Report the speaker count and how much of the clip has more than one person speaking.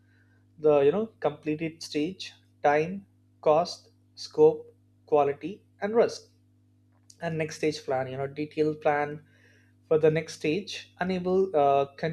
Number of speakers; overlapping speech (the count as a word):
one, no overlap